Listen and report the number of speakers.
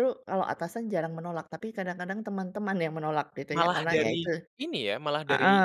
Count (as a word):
two